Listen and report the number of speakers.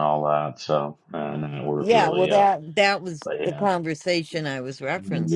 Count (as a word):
two